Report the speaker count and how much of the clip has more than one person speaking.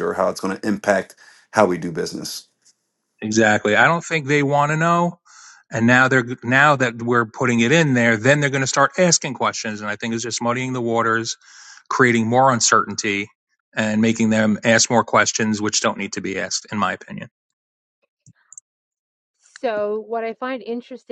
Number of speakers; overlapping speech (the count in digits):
3, no overlap